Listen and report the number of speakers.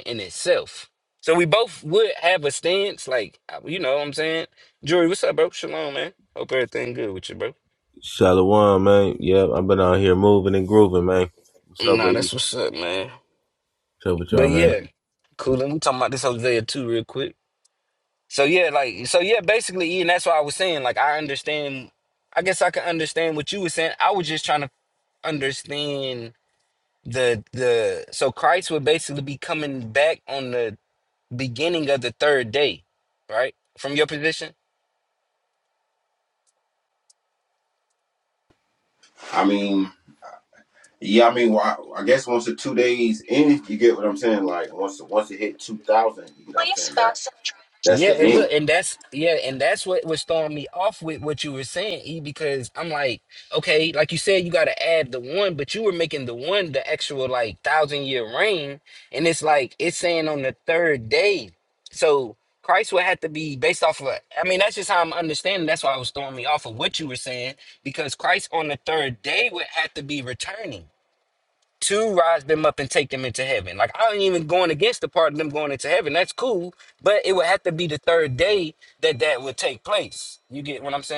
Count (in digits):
3